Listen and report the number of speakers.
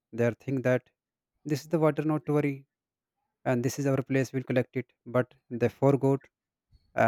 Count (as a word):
one